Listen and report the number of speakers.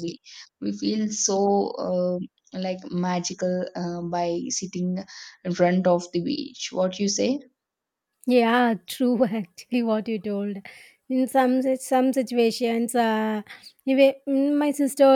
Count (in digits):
2